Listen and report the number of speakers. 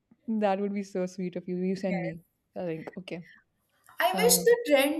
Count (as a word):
two